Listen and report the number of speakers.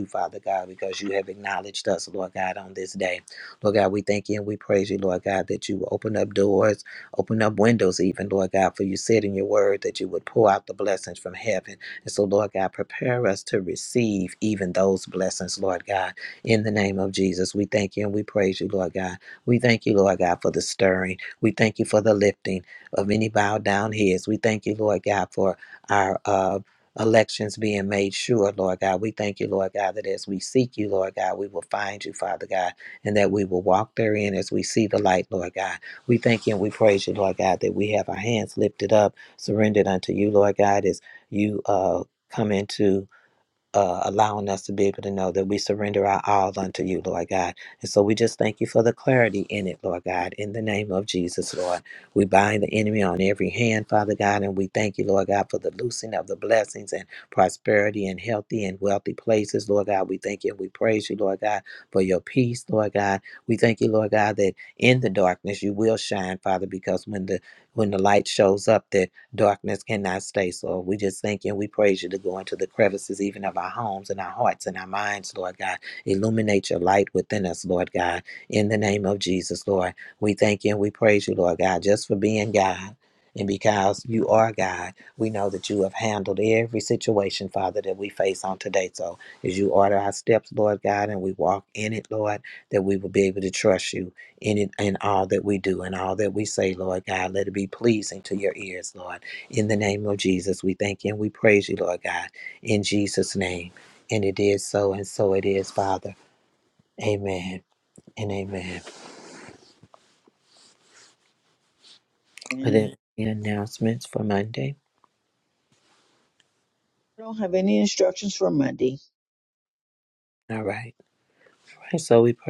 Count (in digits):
2